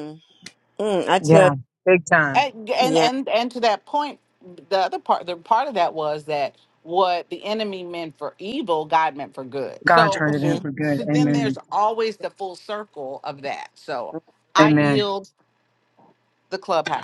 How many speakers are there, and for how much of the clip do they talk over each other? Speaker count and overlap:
3, about 14%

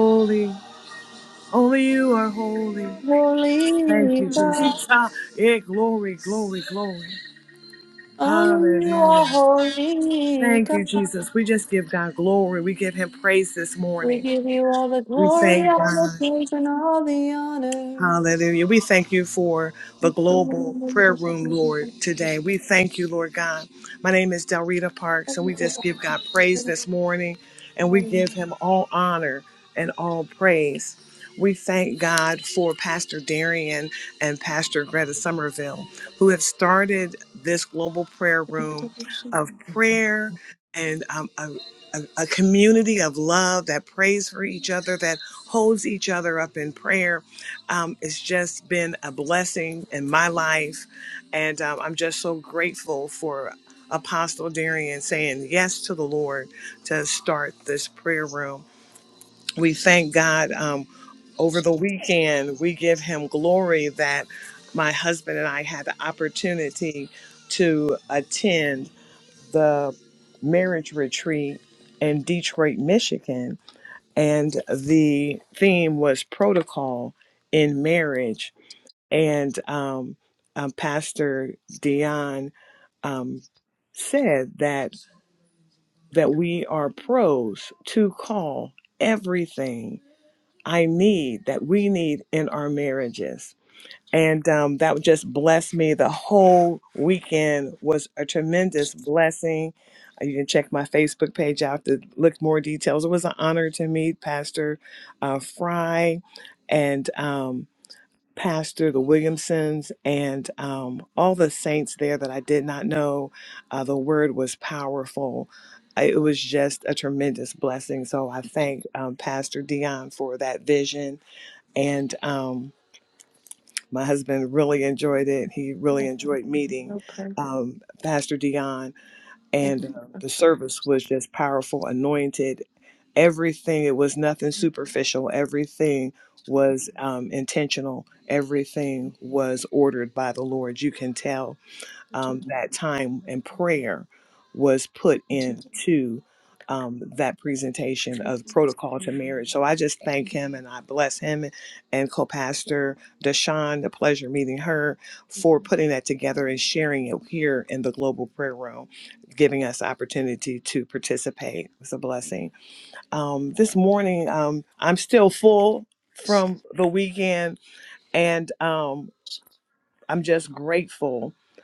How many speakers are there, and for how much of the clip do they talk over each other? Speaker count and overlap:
2, about 3%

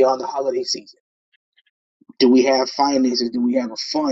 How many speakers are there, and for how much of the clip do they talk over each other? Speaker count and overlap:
1, no overlap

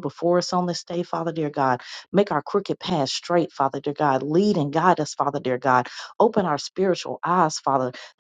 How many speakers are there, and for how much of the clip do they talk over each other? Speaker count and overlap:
1, no overlap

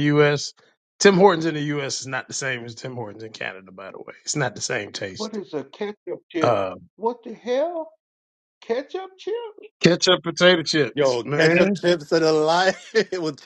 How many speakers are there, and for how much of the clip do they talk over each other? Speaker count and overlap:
3, about 5%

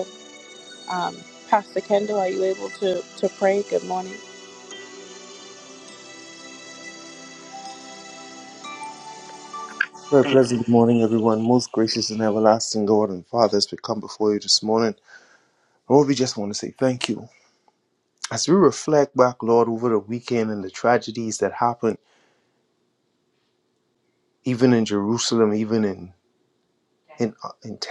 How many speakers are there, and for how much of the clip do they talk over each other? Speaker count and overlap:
2, no overlap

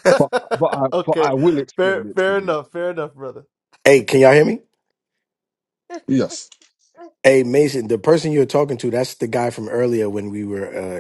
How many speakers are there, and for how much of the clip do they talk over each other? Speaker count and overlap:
3, about 11%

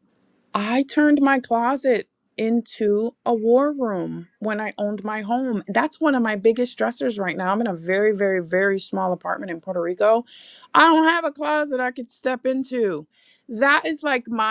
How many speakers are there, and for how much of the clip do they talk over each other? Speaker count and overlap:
1, no overlap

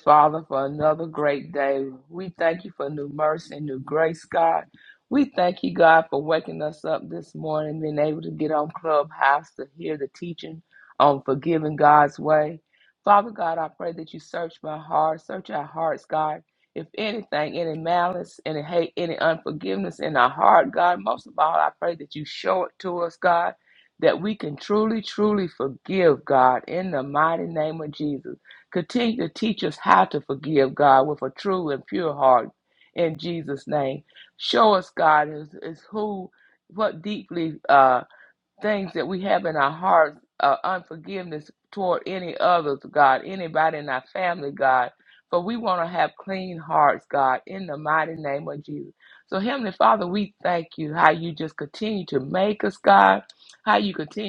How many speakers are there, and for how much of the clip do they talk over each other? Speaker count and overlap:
1, no overlap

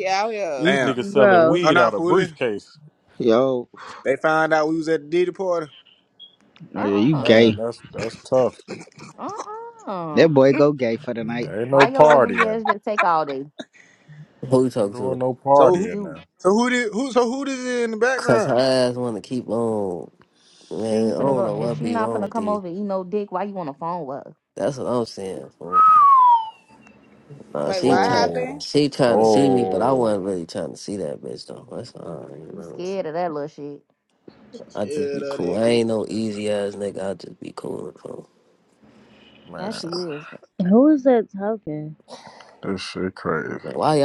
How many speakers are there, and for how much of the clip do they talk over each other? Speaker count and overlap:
7, about 23%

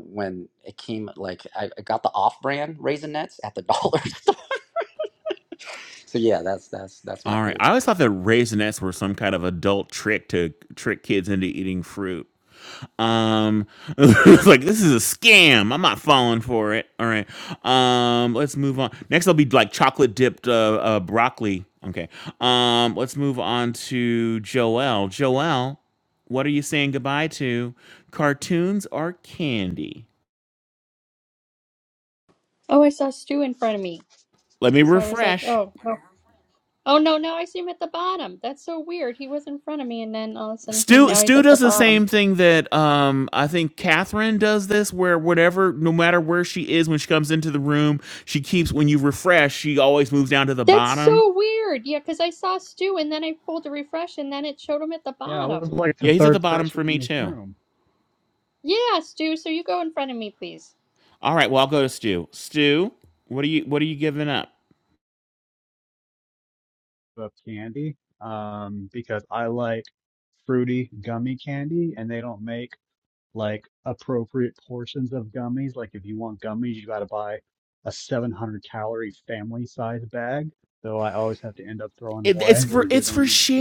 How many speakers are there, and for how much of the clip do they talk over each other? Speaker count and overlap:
4, about 7%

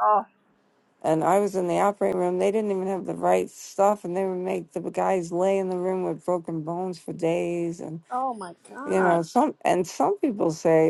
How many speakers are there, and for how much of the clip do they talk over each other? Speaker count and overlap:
2, about 3%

